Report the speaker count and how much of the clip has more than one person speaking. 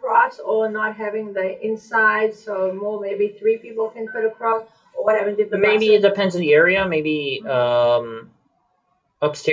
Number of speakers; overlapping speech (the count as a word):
two, about 4%